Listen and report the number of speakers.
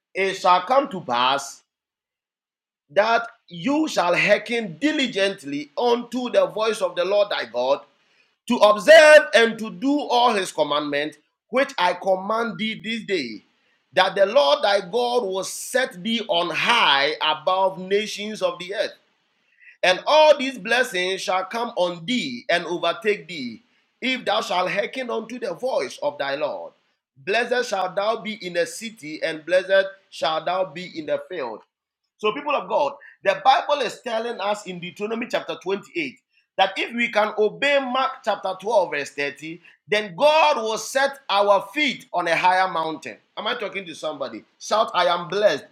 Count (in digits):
1